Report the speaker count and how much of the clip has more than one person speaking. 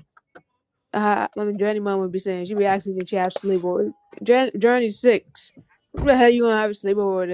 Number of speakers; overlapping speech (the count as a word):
one, no overlap